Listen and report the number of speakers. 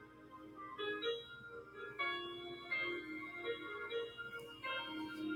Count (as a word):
zero